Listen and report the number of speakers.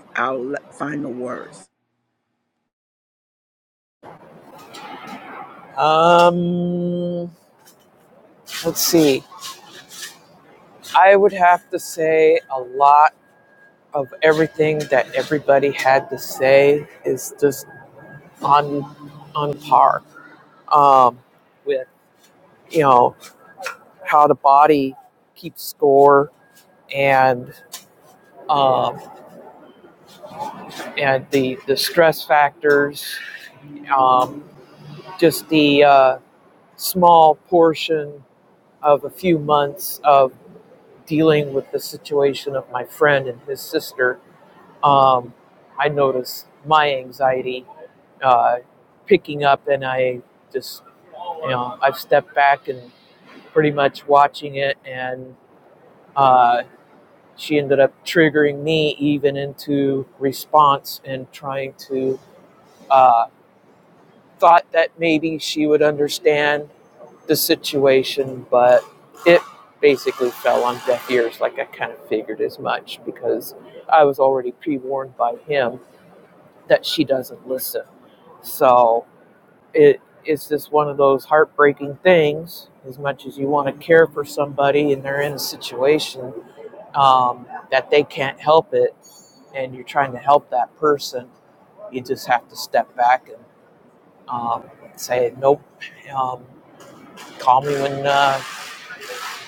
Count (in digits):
2